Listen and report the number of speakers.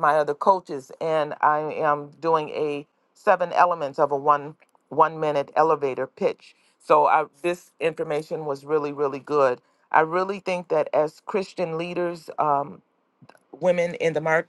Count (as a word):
one